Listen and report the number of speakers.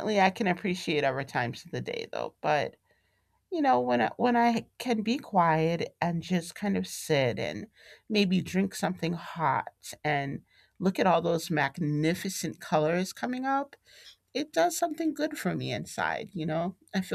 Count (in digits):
1